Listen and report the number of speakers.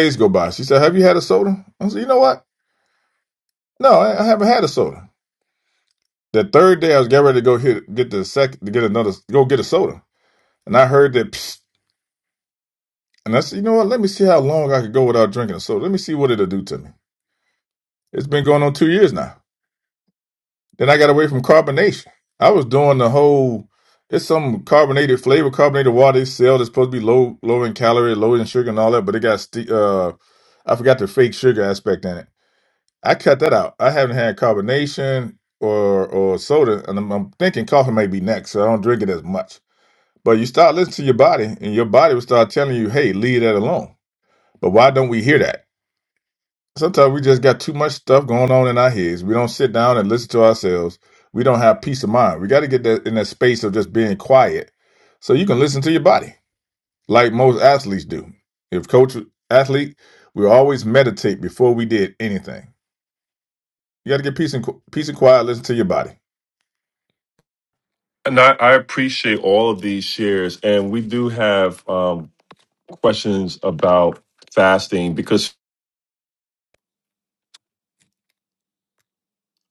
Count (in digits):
2